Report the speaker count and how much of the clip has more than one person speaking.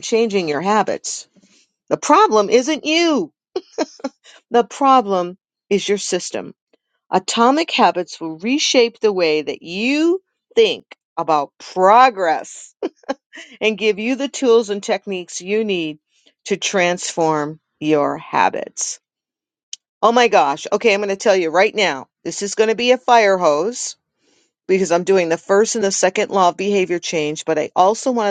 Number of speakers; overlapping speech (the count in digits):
1, no overlap